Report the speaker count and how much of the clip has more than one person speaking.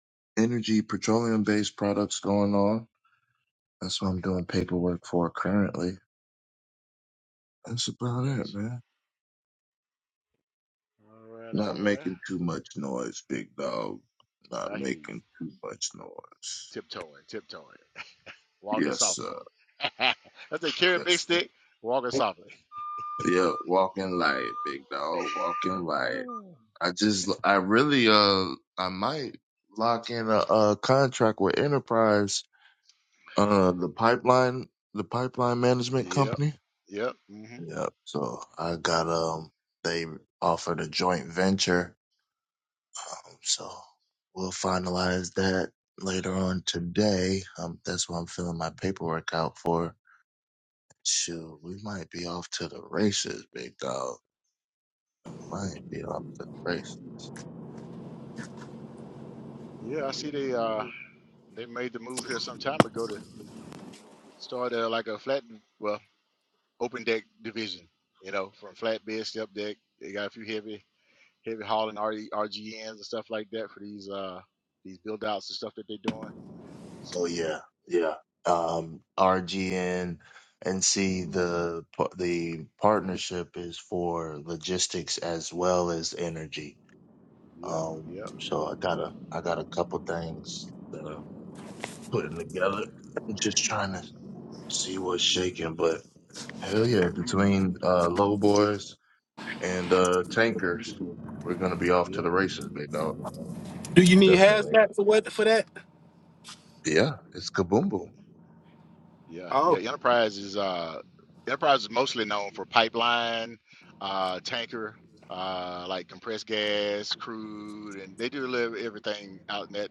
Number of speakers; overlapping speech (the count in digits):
3, about 4%